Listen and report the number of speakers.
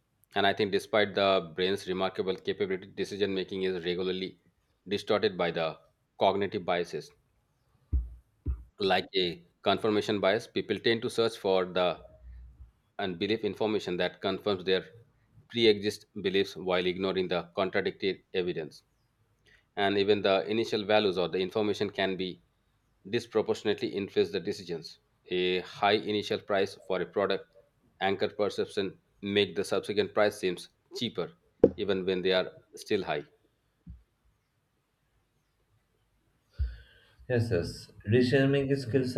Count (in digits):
2